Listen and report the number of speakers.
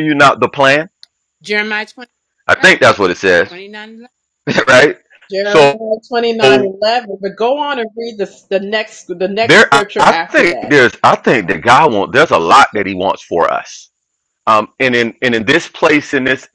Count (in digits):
3